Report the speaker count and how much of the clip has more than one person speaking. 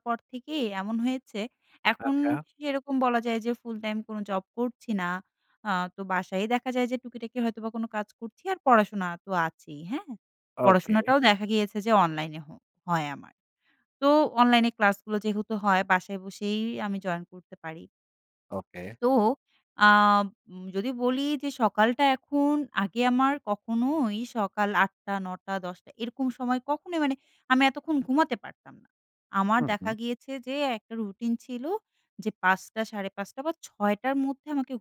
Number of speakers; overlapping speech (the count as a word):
two, about 3%